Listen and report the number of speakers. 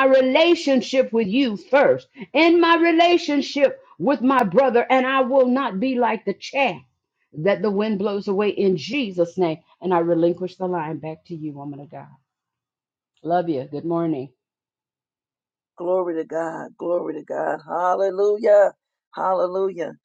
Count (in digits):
2